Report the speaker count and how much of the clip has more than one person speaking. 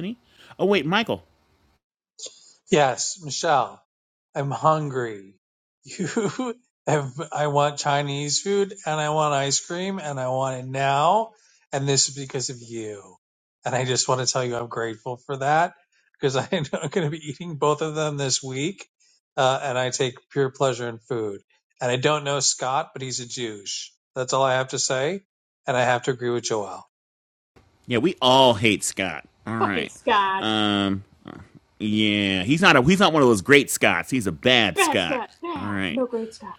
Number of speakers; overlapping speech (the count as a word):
three, about 3%